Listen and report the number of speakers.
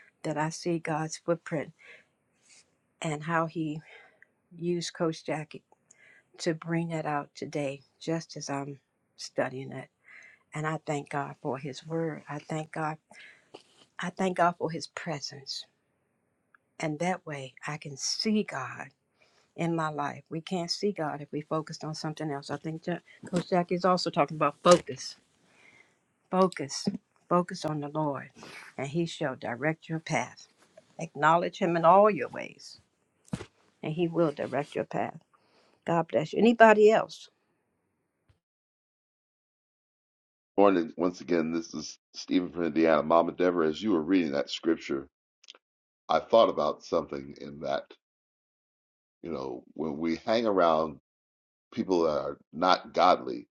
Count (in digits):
2